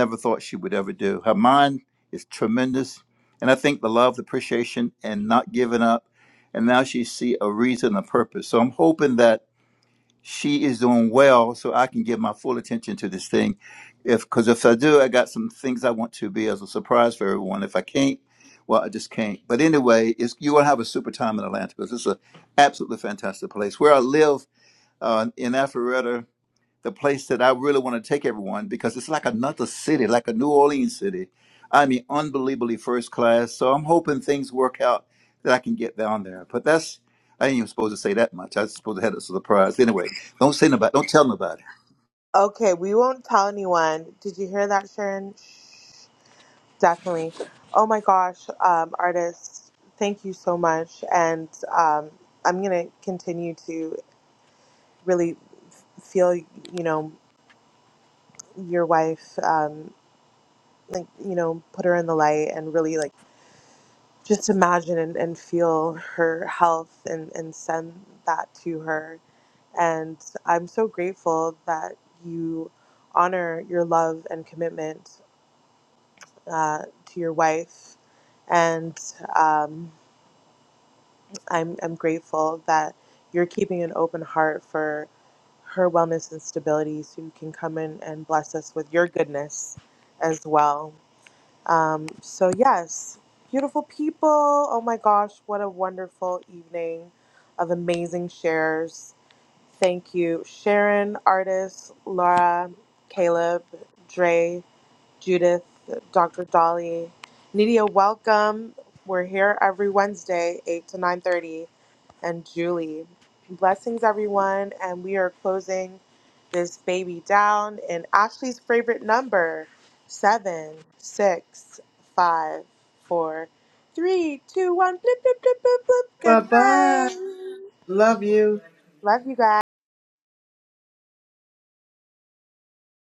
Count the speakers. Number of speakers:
three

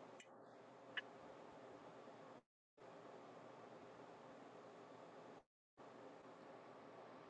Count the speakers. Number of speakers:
zero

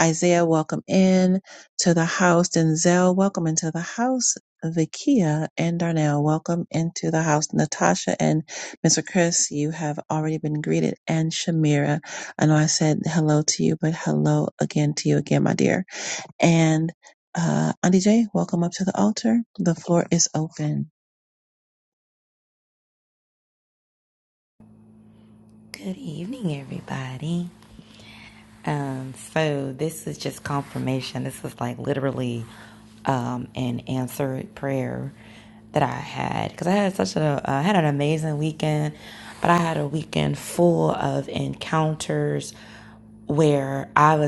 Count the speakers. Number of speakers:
two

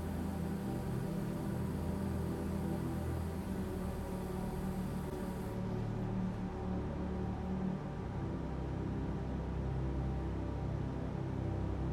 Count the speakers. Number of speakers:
zero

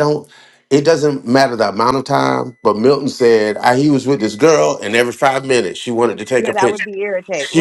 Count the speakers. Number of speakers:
two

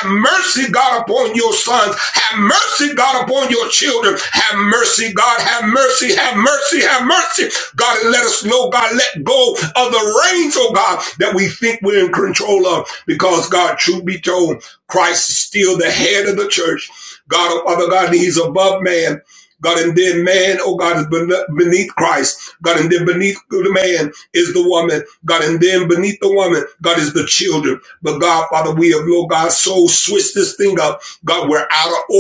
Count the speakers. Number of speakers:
one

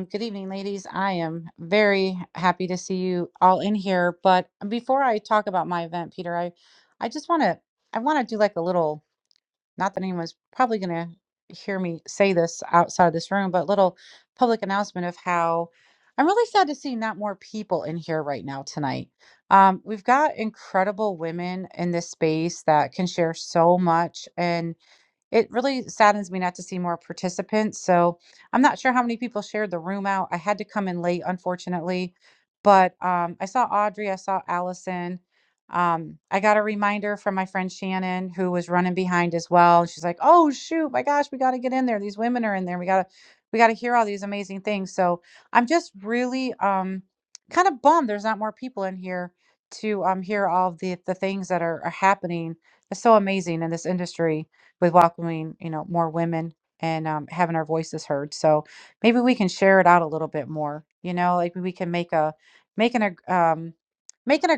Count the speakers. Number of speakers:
one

